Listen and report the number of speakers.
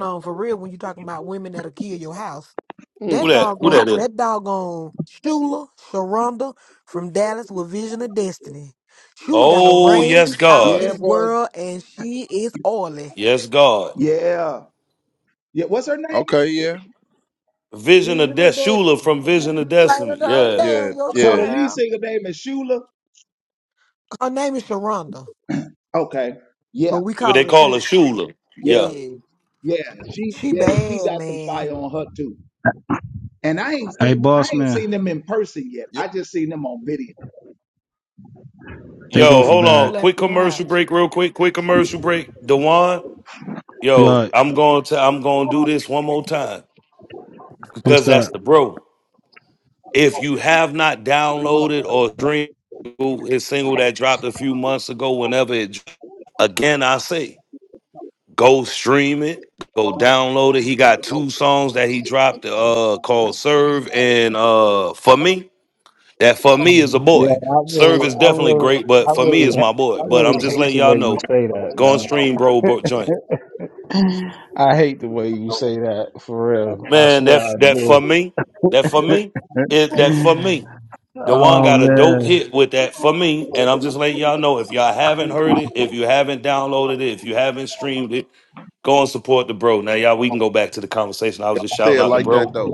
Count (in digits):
5